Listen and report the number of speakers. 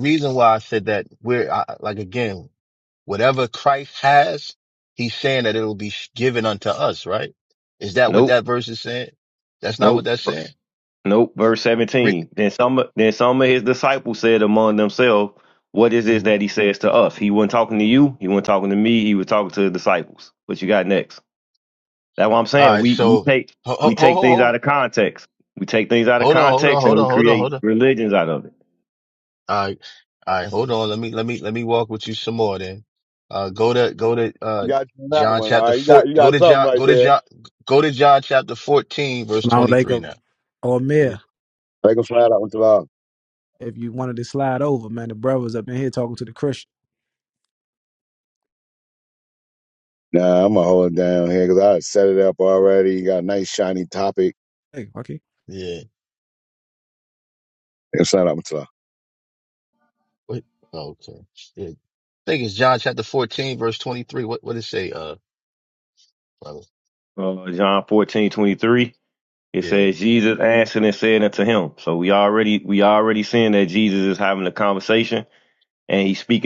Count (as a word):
four